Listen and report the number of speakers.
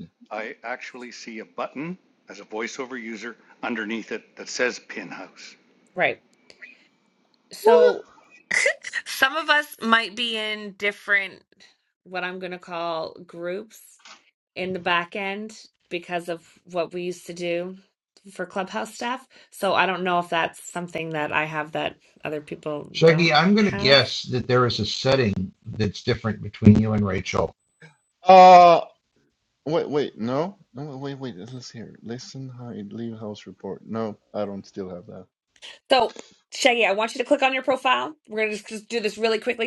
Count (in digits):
4